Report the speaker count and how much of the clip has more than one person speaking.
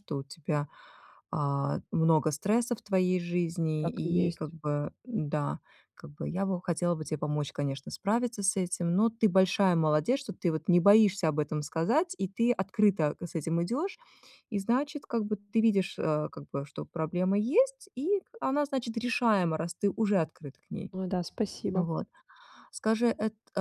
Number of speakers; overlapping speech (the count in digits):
2, about 3%